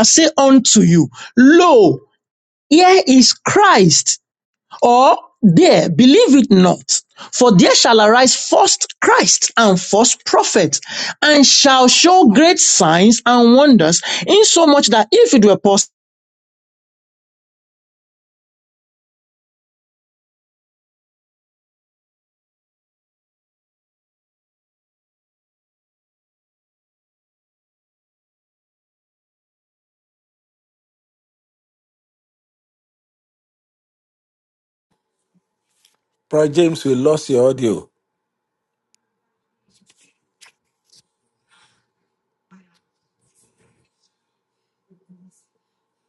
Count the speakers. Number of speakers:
2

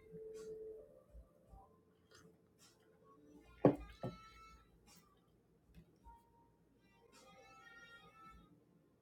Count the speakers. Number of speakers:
0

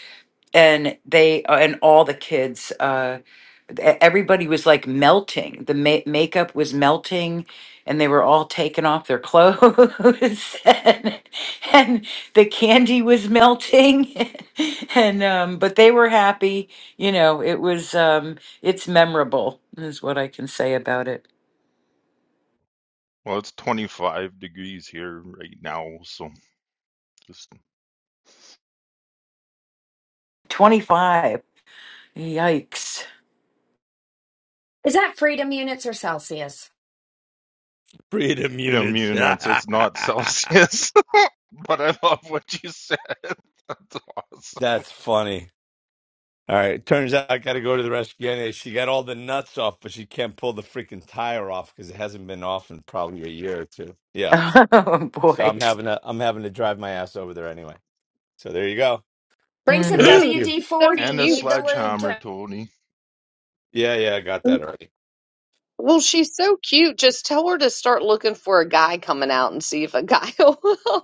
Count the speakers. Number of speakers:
5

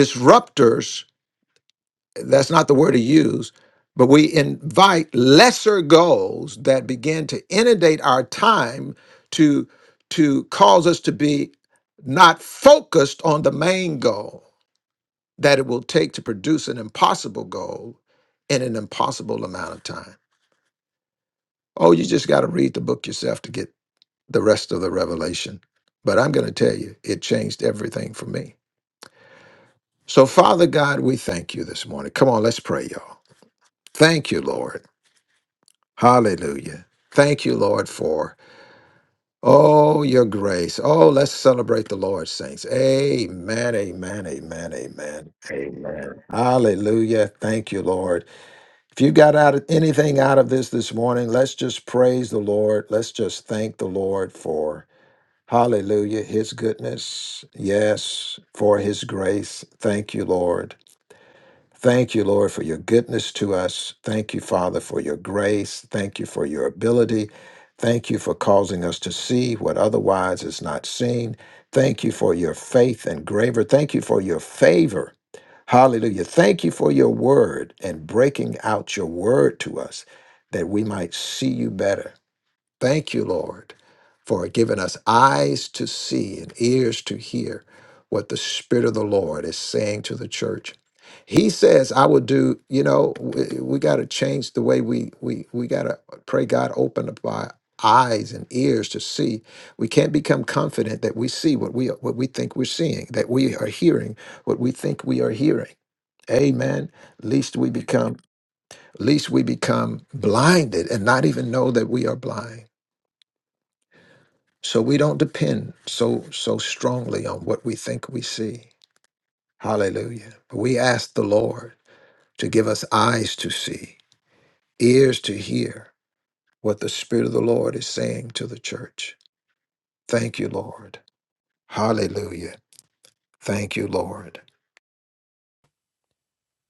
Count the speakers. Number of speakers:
1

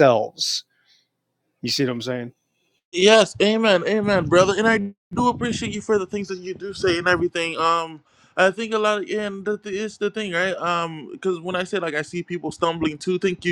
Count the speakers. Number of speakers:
2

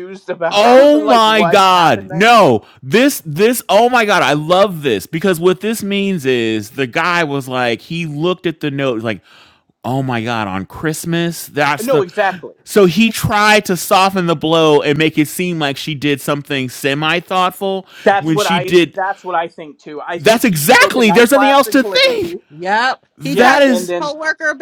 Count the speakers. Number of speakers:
3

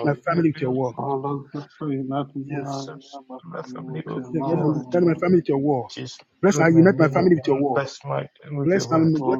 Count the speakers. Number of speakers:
3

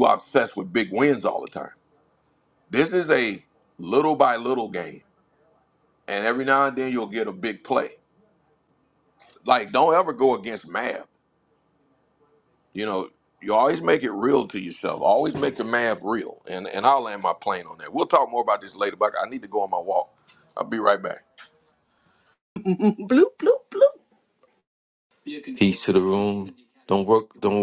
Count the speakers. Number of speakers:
3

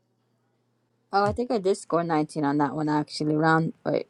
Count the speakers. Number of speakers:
1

